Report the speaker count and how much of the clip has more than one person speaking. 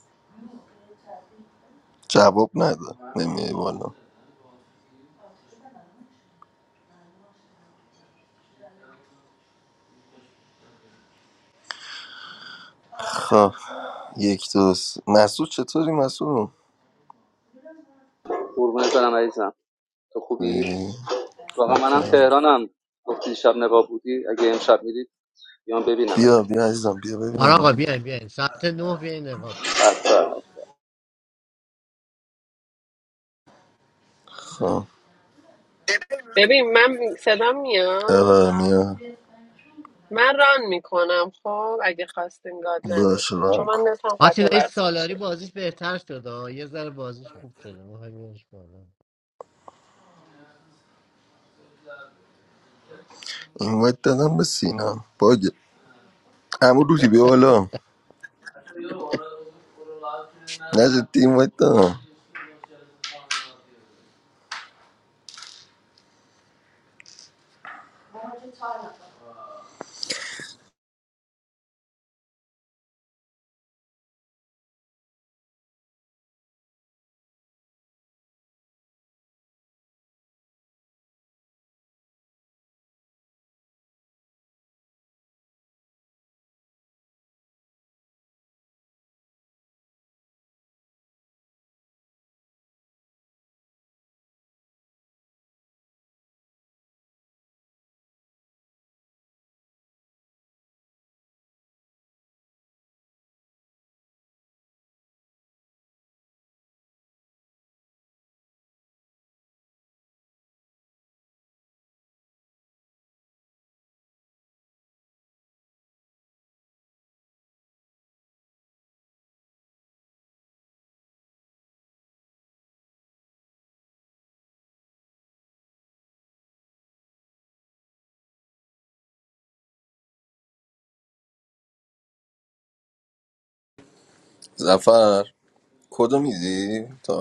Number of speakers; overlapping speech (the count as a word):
four, about 2%